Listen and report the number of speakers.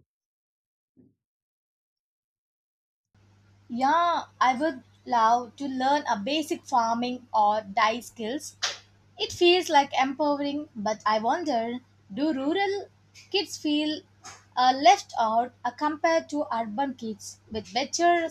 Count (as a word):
one